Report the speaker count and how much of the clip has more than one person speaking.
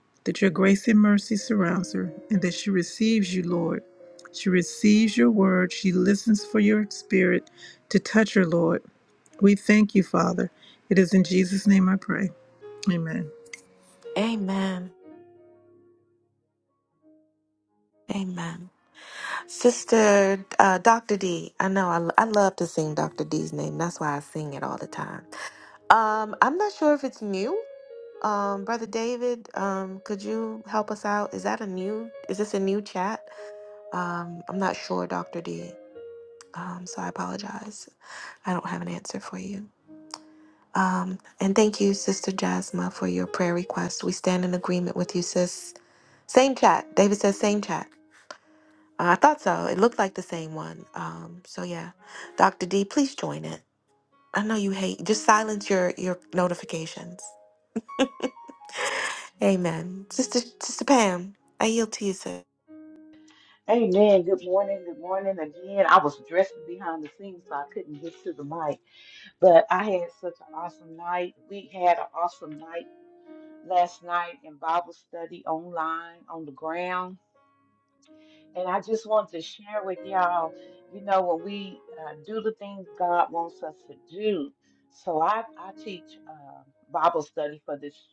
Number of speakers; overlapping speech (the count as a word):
three, no overlap